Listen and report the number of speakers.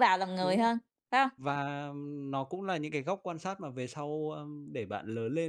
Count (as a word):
two